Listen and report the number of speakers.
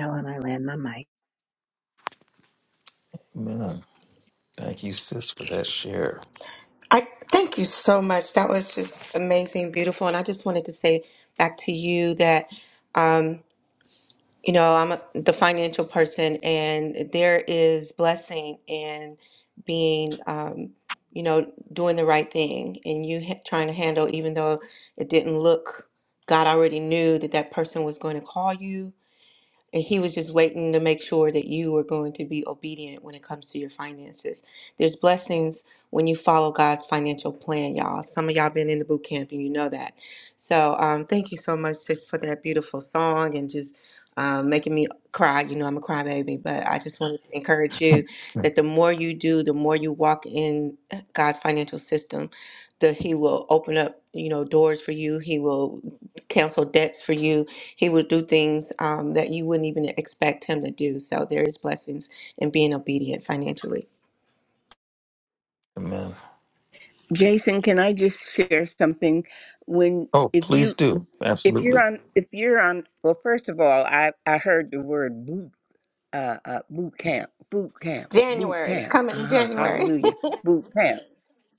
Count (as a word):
four